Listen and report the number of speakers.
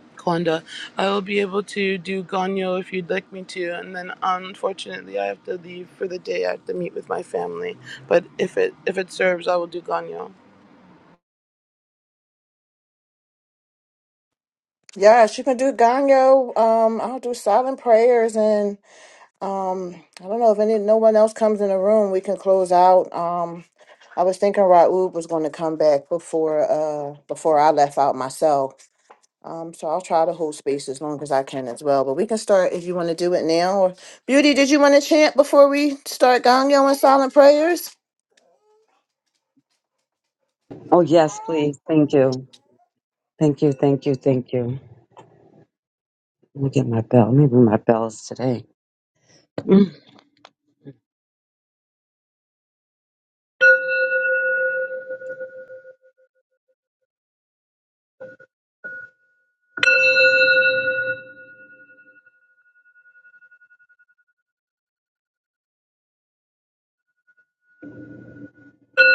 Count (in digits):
3